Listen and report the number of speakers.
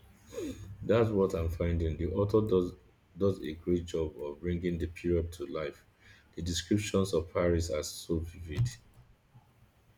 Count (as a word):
one